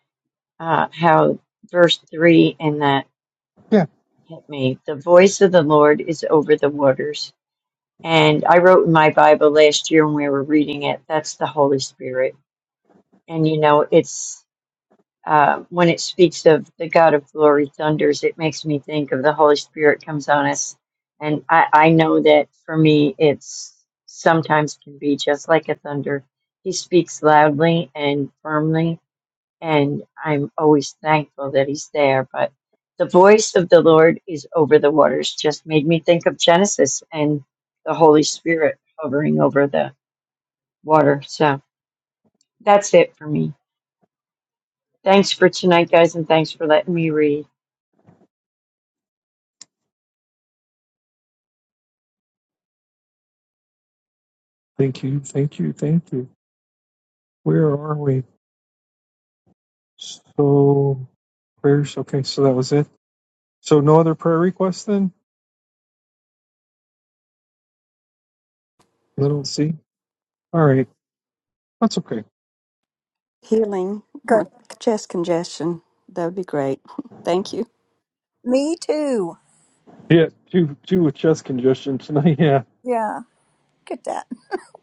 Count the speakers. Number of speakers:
4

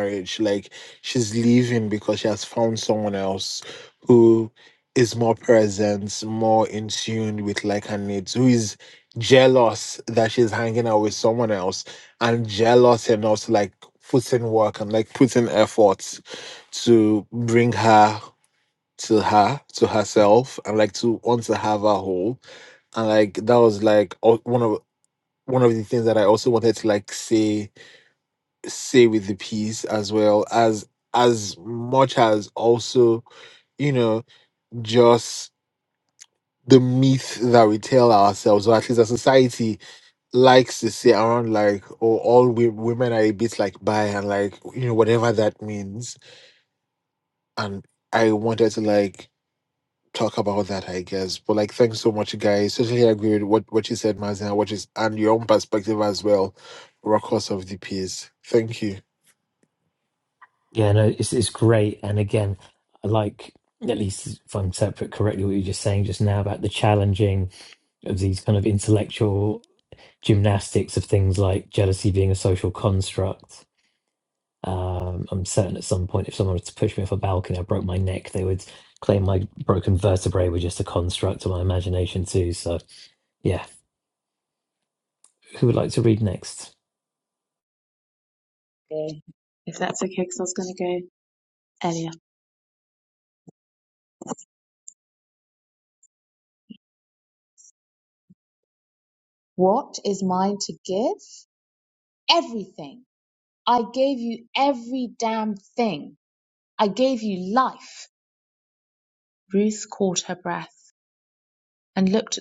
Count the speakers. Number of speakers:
3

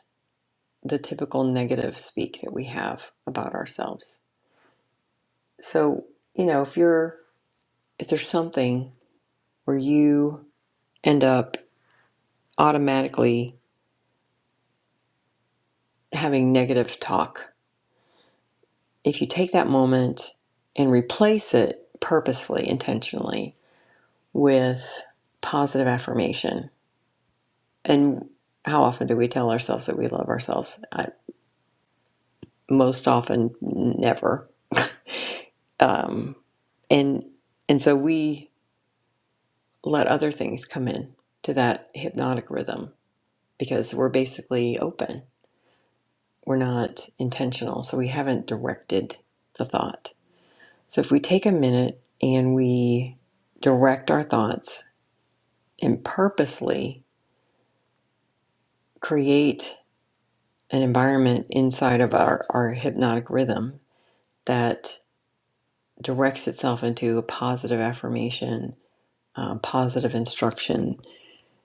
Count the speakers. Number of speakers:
1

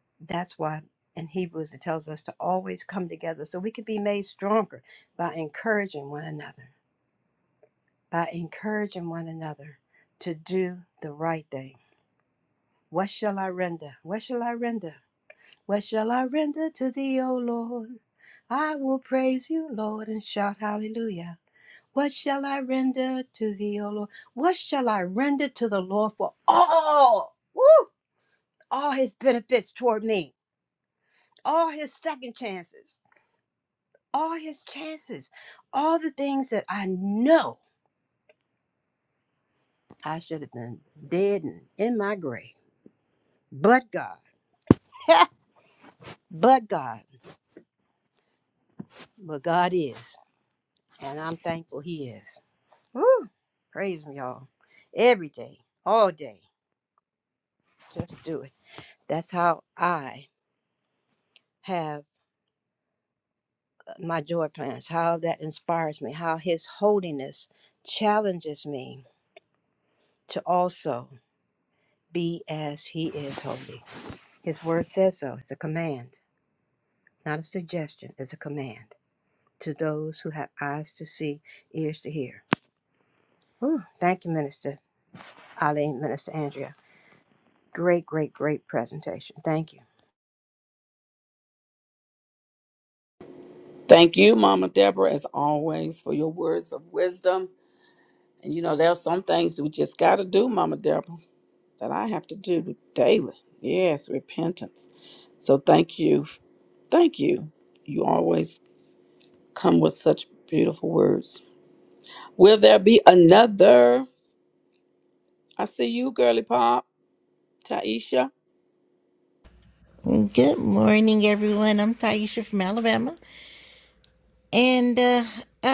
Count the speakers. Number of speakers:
3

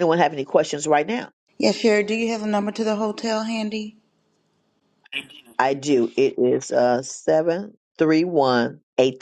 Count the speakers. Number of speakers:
2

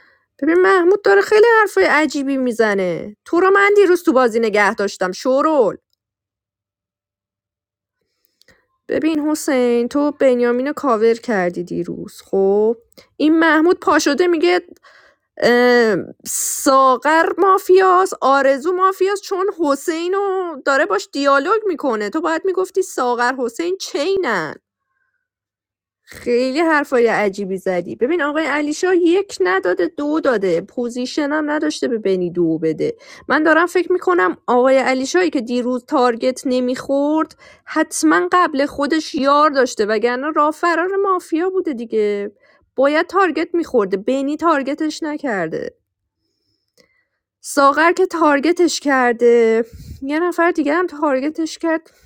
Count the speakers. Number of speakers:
1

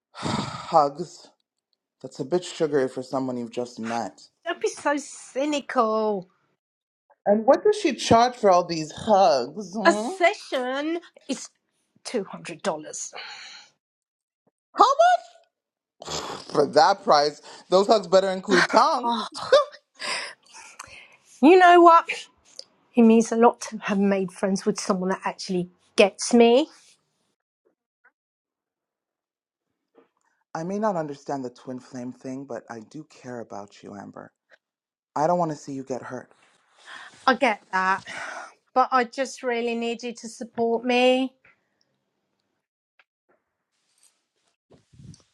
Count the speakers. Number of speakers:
2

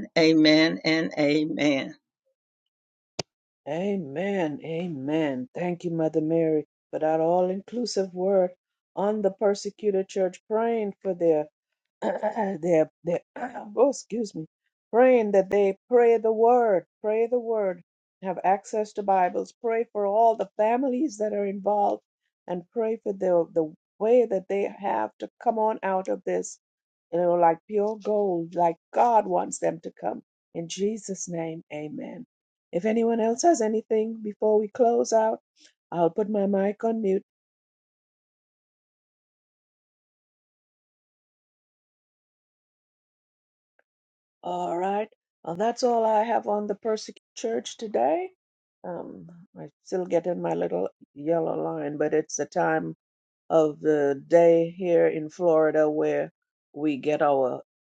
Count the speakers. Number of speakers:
2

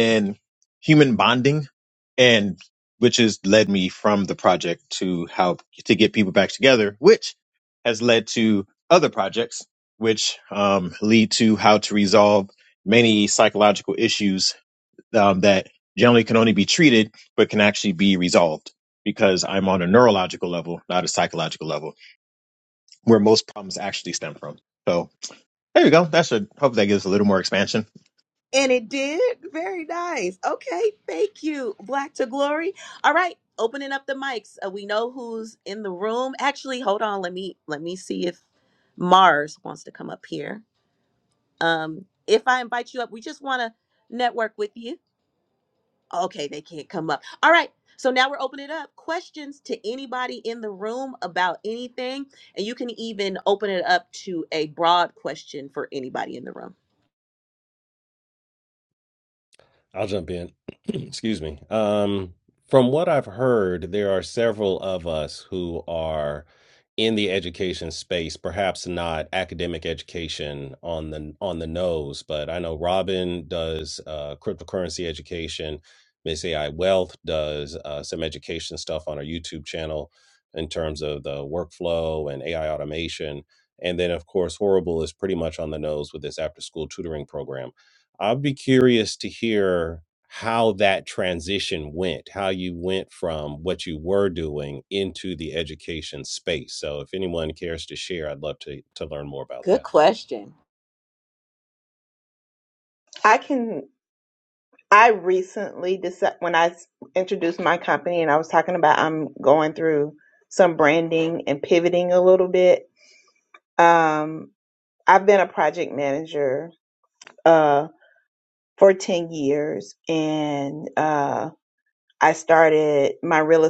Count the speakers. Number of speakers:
4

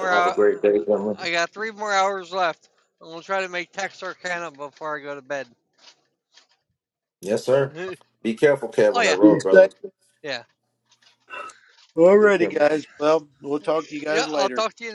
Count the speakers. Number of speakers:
3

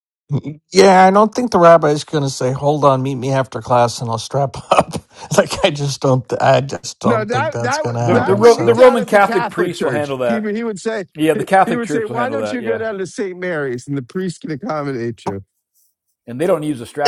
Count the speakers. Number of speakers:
3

